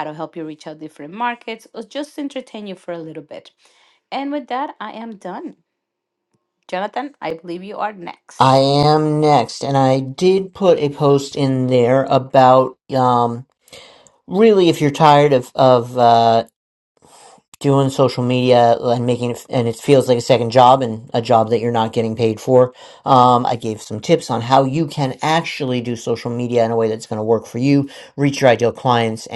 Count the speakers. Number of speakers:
2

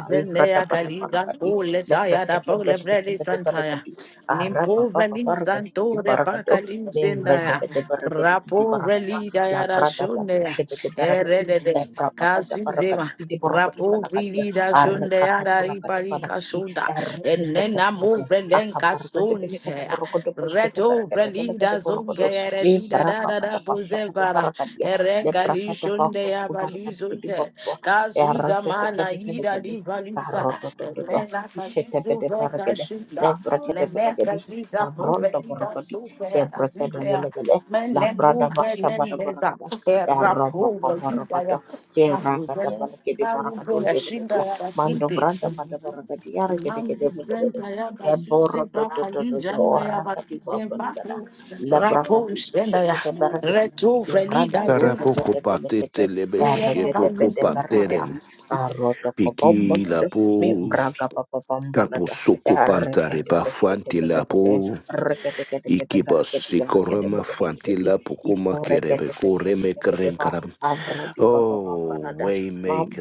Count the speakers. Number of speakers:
3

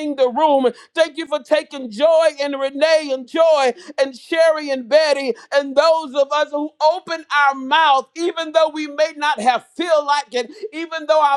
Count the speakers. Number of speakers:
1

